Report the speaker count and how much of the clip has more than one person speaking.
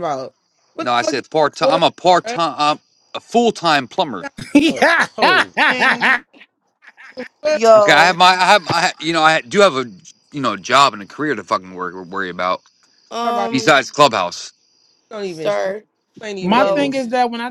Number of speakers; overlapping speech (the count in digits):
4, about 20%